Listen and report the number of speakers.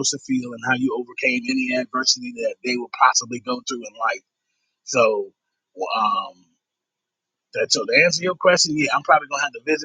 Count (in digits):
1